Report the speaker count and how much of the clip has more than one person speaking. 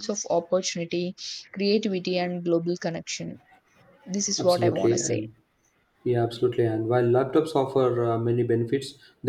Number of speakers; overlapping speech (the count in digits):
2, about 10%